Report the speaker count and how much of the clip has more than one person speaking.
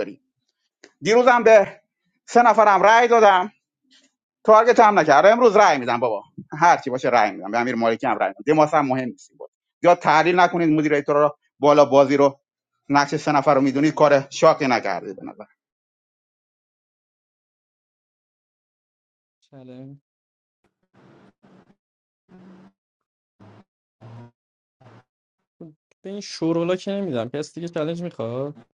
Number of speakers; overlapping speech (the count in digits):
2, no overlap